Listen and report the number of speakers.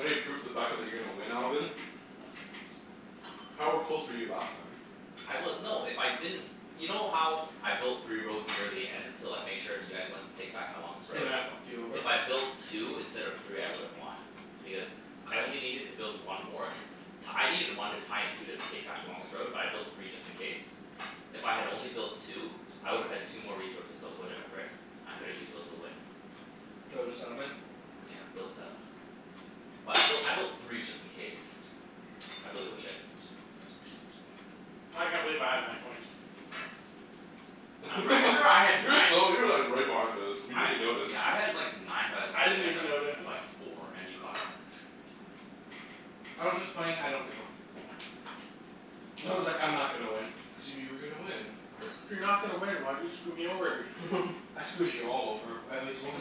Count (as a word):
four